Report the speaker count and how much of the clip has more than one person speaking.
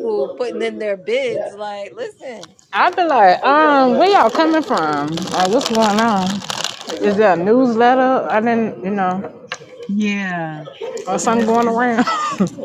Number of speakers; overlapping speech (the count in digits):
3, about 5%